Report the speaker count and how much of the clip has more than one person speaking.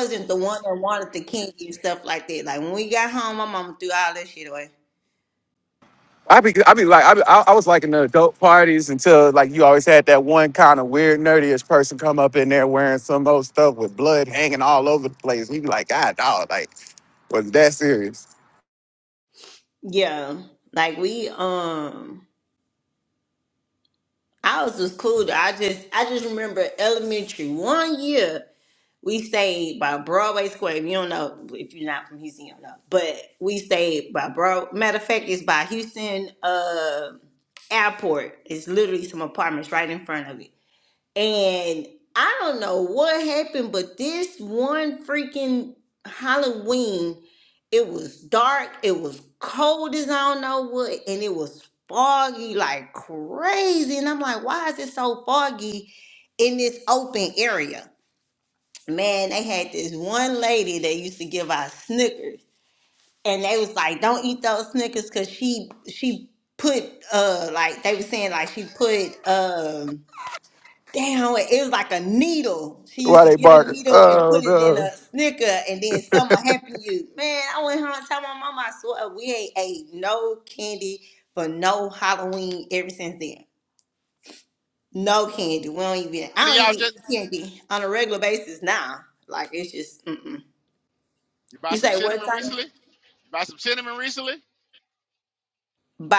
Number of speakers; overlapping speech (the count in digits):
3, about 3%